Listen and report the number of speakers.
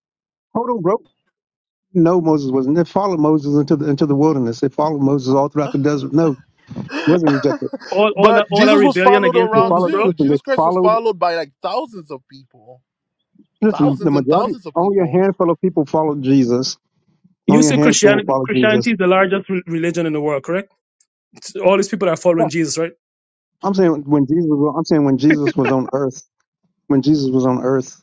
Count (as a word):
three